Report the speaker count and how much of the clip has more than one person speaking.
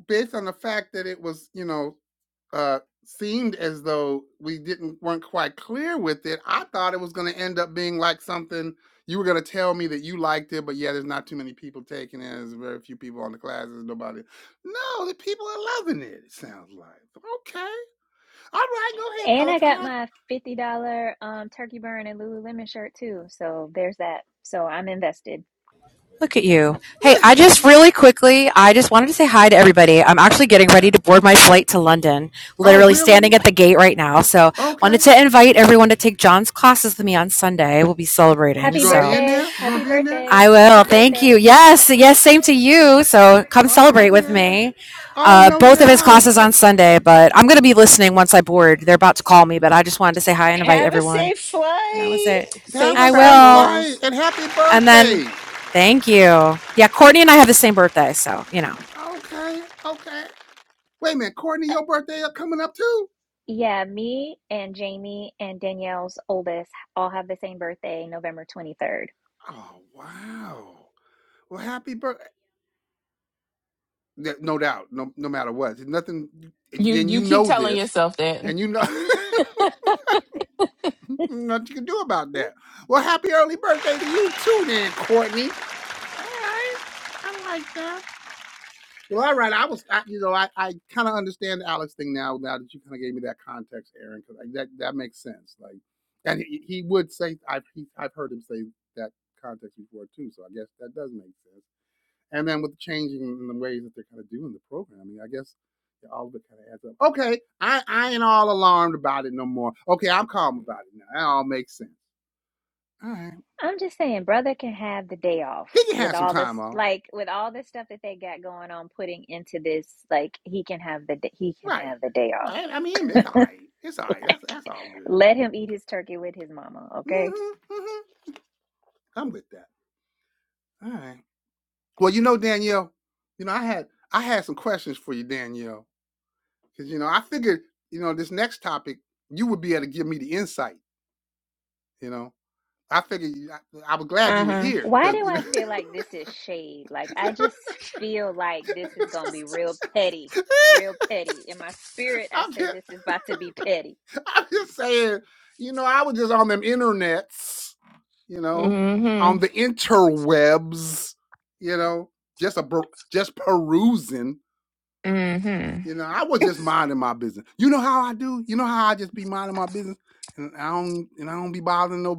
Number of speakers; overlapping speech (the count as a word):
five, about 8%